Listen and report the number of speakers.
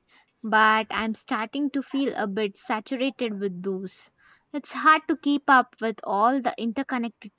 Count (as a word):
one